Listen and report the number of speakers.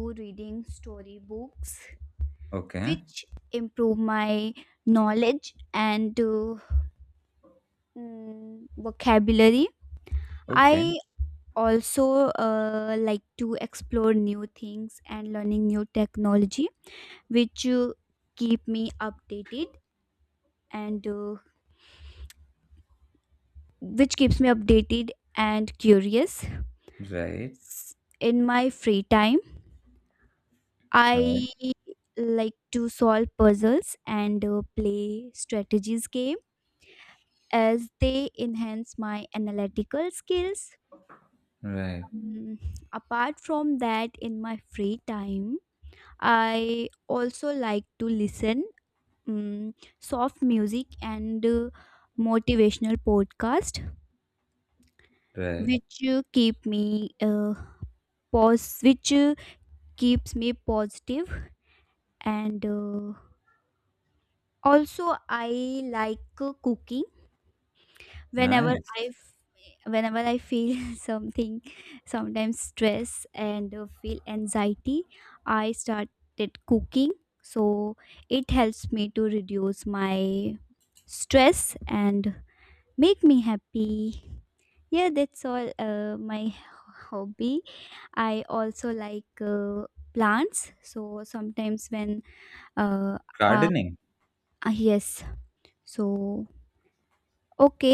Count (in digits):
2